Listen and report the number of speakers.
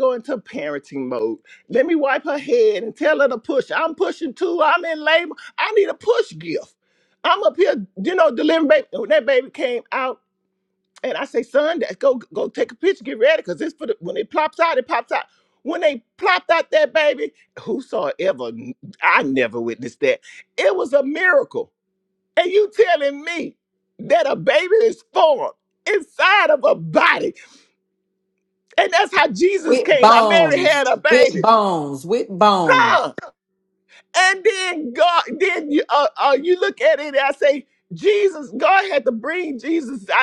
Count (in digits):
2